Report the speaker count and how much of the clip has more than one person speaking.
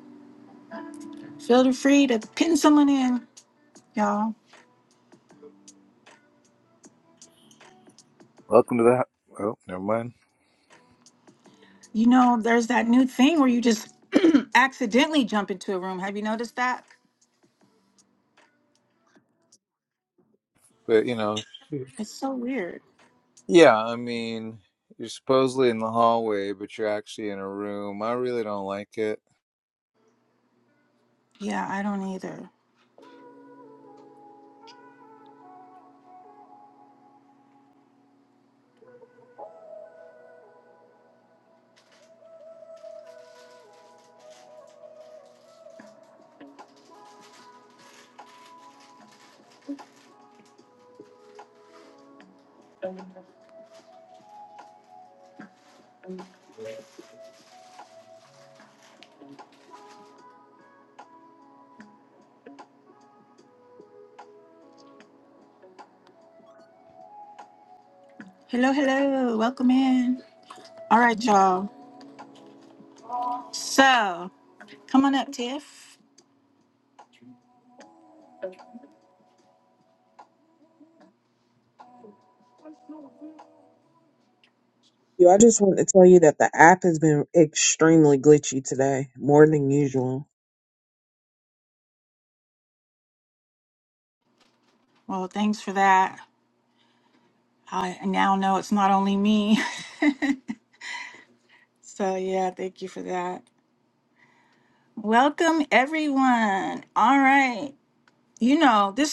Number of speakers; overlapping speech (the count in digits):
3, no overlap